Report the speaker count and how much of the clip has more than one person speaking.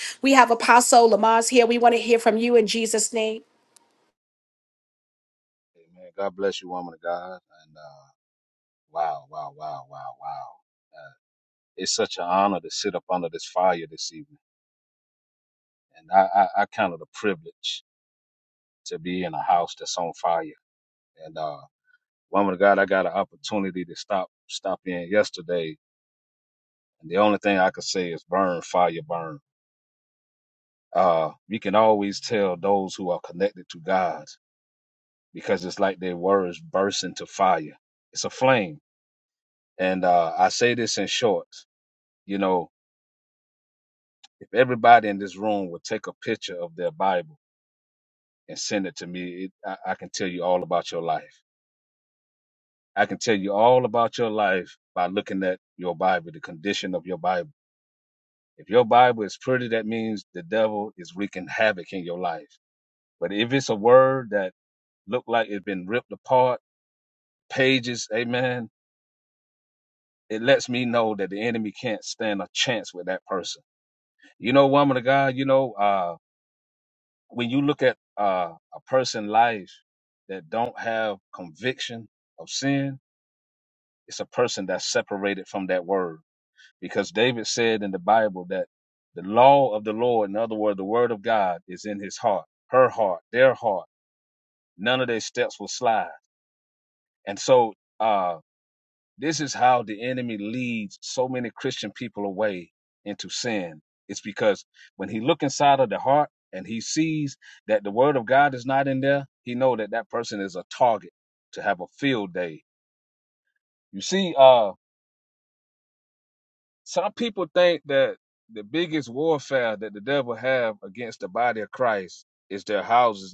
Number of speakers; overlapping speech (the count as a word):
two, no overlap